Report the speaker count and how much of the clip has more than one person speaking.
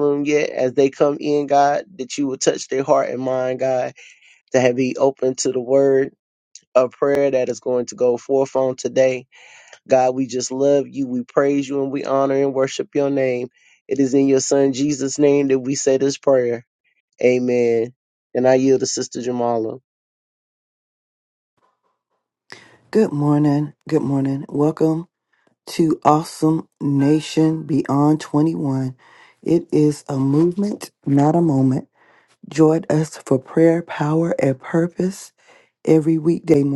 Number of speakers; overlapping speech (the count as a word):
two, no overlap